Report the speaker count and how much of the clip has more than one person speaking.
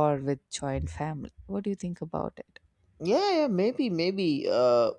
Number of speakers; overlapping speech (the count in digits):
2, no overlap